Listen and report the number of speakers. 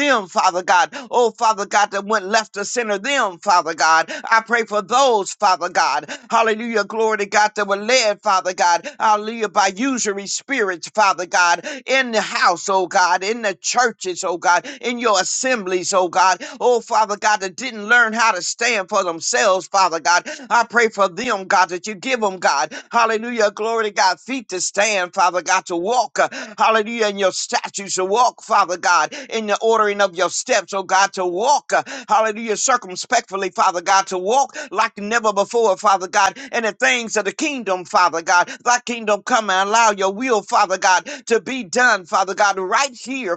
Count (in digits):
1